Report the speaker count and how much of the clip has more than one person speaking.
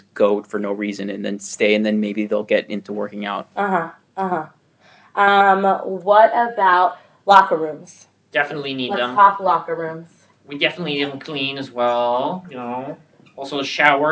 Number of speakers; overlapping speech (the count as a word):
three, about 2%